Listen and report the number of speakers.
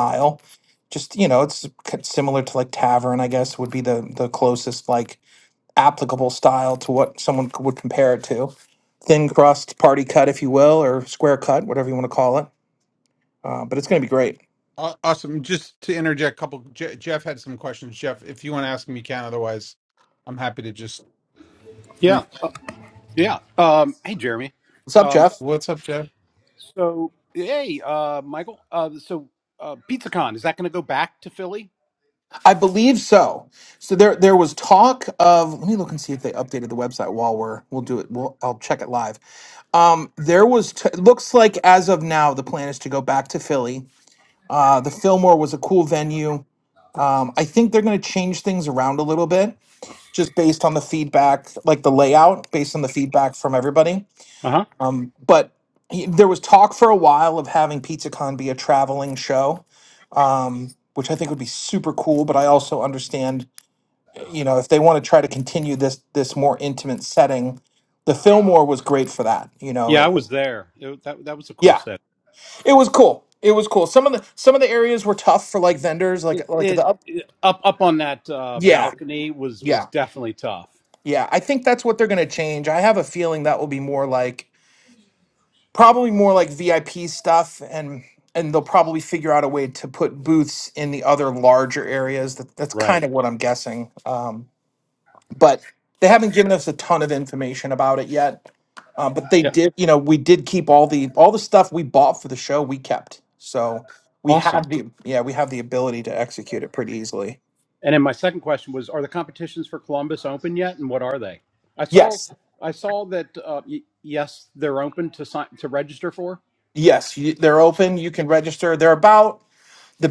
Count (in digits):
3